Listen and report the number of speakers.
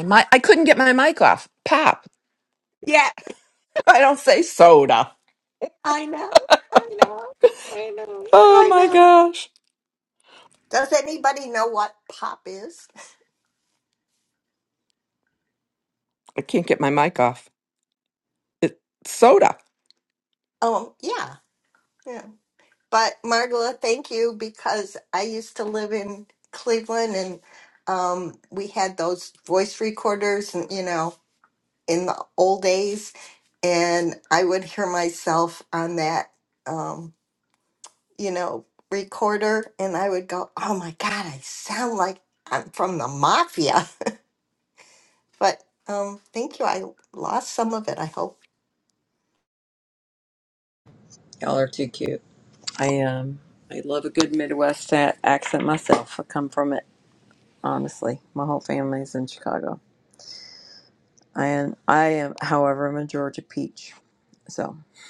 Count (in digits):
4